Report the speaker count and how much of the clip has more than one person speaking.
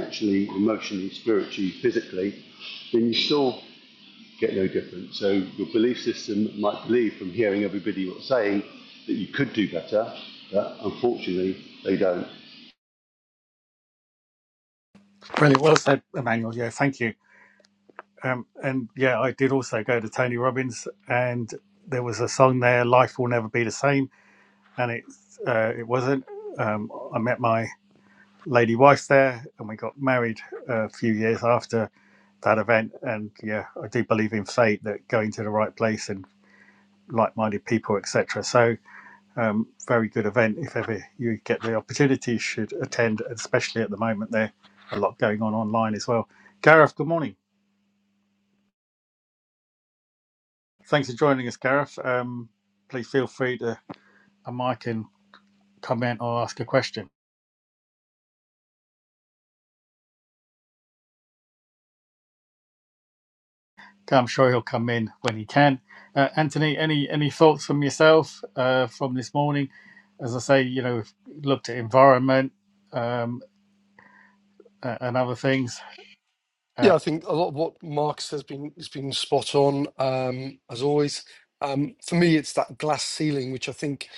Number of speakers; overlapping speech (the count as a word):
three, under 1%